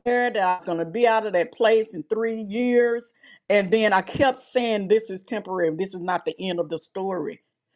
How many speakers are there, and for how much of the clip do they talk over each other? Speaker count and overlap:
1, no overlap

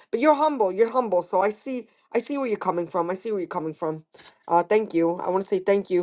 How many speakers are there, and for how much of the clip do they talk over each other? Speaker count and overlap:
1, no overlap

